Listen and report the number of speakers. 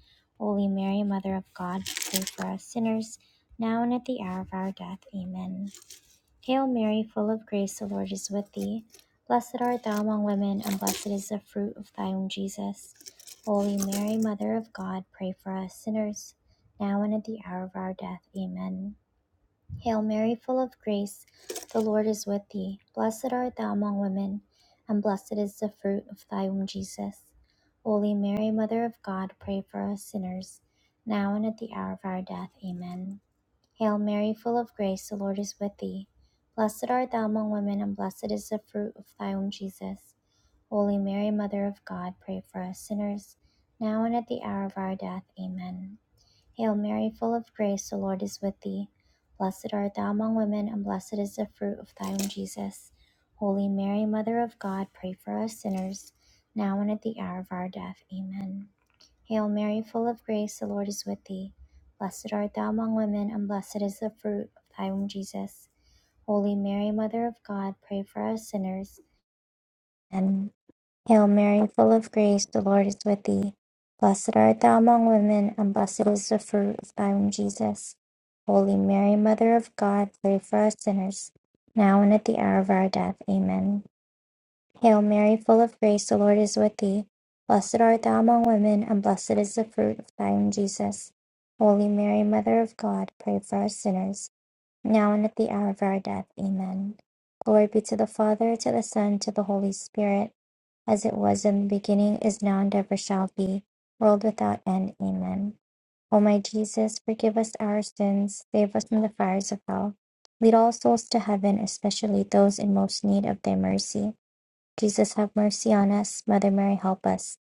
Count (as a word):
one